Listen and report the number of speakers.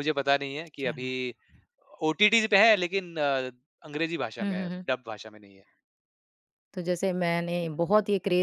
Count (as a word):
two